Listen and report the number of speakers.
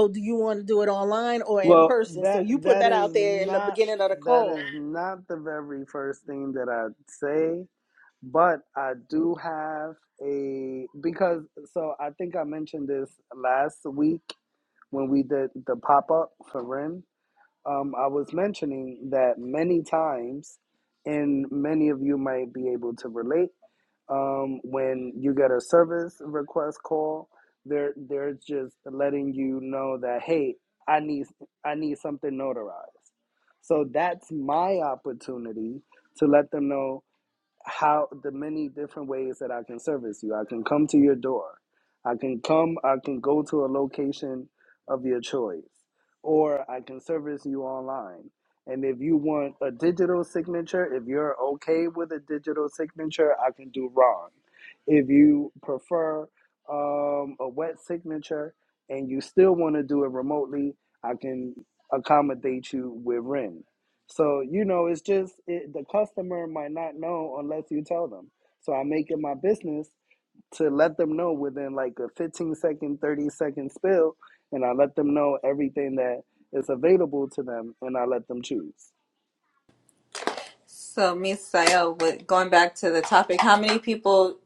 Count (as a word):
three